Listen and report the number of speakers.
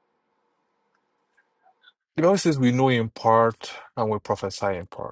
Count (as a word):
one